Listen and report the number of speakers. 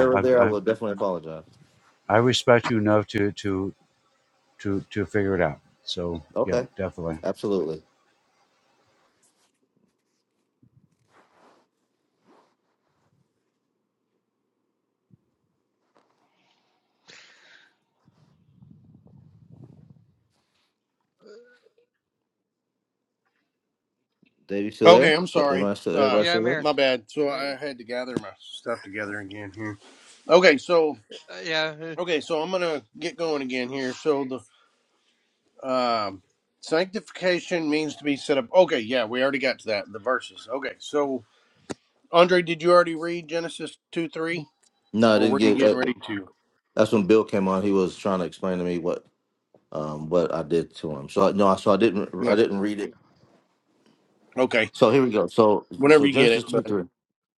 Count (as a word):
four